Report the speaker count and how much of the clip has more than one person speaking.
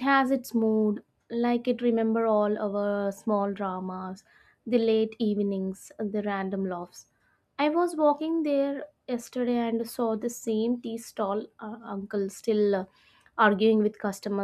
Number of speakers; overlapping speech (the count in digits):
1, no overlap